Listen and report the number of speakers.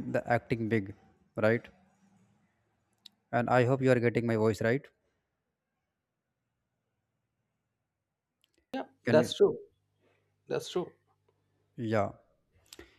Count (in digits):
2